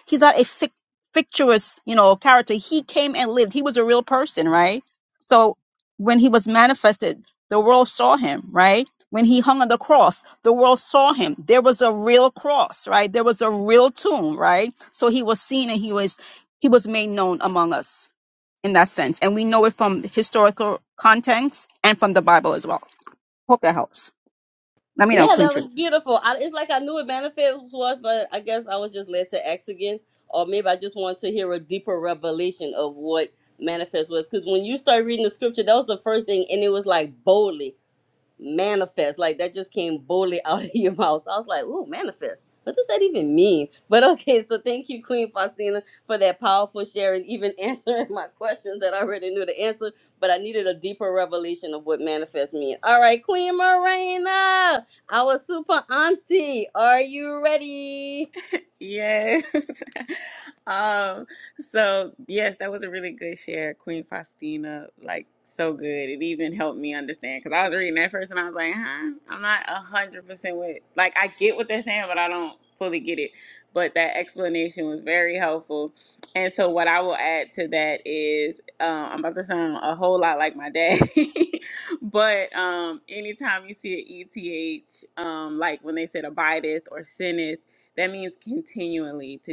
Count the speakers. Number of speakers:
three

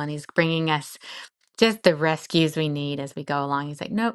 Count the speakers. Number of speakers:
one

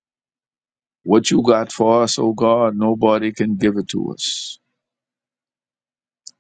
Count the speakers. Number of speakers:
one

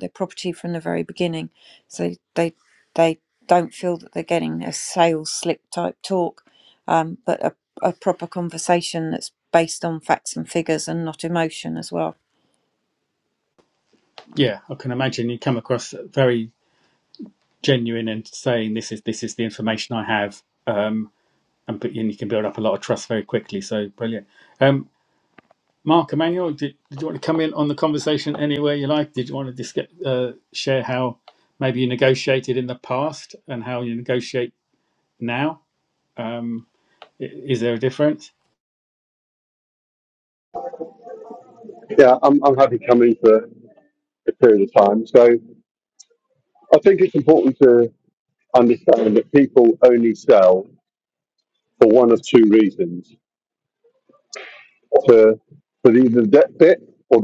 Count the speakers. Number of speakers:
three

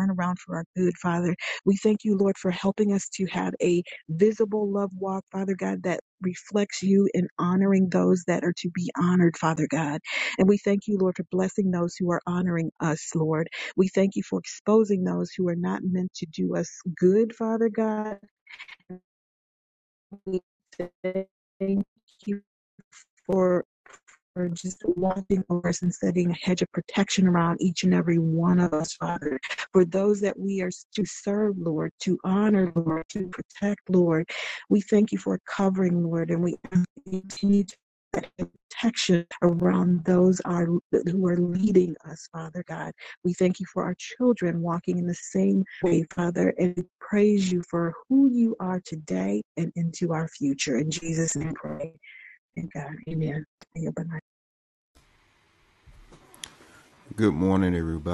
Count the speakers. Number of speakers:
two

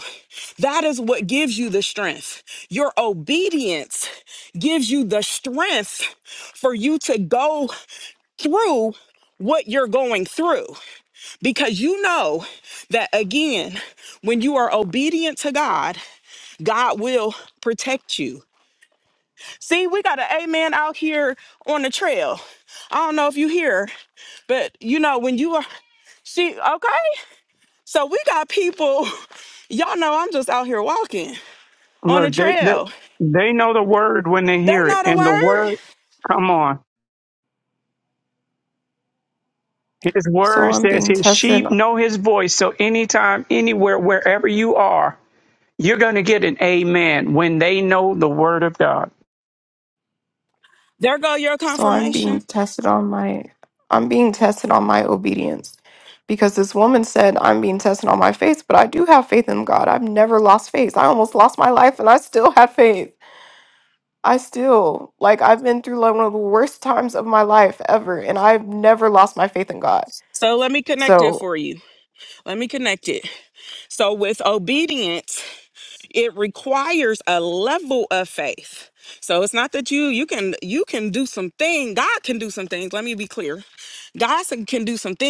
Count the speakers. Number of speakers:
three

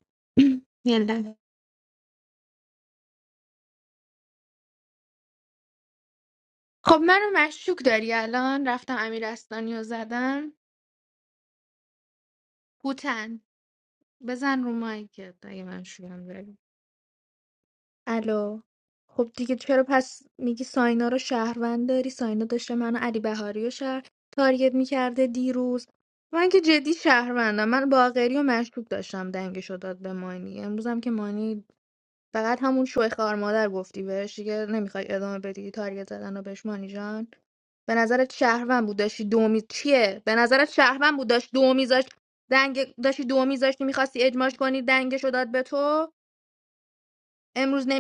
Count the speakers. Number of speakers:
one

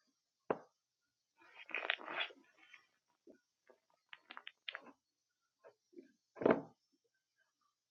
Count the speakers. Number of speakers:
zero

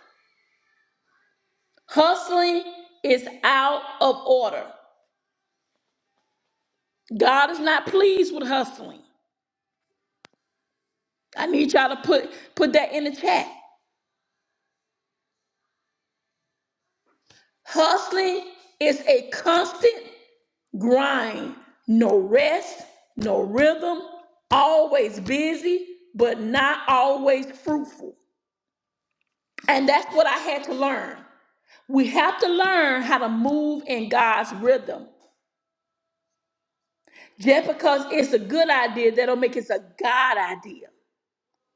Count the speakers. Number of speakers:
one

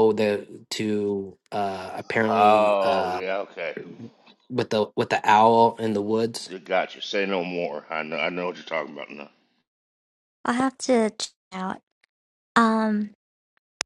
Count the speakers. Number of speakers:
three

